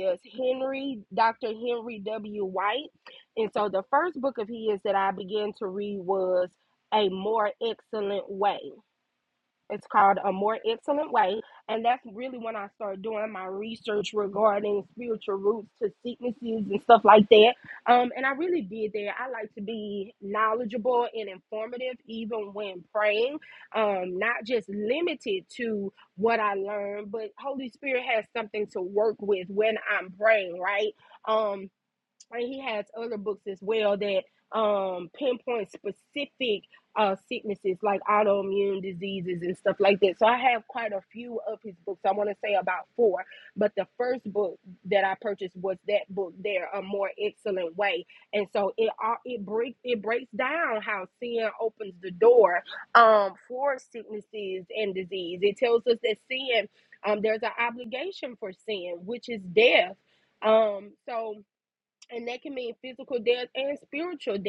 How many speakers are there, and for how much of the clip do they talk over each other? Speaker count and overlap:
one, no overlap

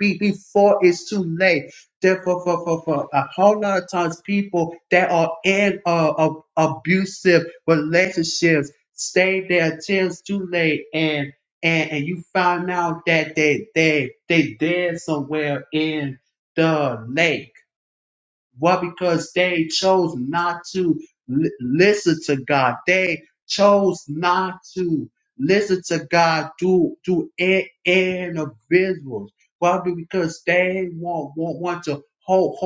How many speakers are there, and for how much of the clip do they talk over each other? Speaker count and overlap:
one, no overlap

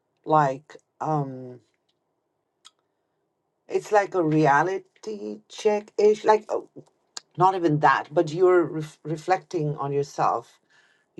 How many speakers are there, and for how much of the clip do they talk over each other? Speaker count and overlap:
one, no overlap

